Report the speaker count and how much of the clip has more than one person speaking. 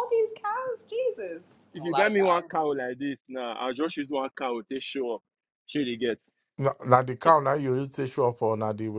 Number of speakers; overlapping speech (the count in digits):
3, about 8%